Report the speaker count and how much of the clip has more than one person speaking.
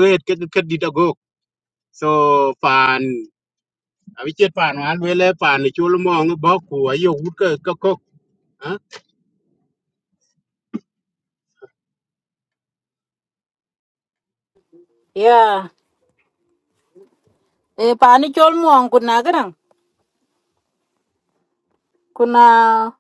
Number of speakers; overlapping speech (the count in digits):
2, no overlap